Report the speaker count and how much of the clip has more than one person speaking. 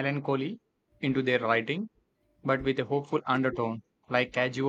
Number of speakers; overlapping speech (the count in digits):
1, no overlap